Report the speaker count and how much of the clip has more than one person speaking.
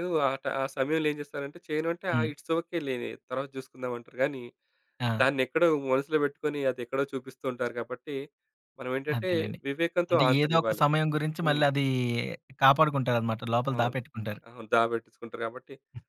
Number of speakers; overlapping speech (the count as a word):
two, about 12%